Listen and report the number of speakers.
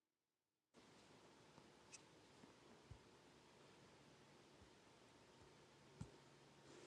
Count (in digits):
0